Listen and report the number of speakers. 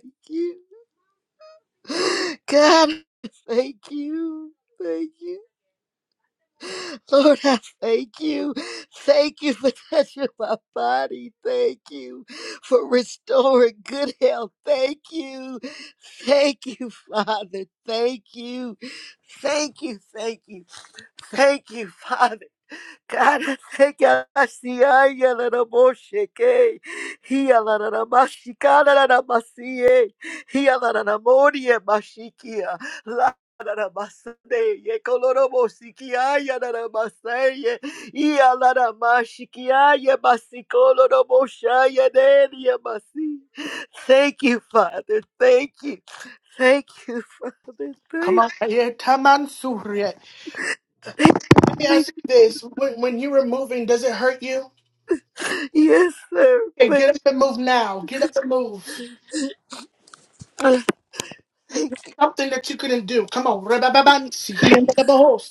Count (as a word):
two